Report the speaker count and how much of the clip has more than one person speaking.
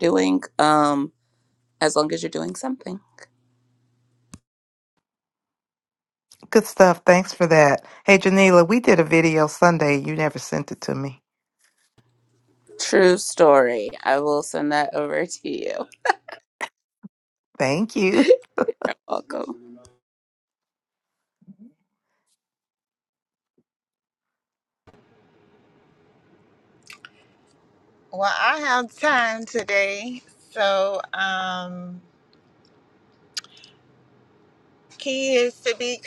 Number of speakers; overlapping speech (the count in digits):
3, no overlap